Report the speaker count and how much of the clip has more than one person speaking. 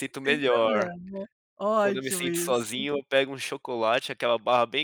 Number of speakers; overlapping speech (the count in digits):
2, about 35%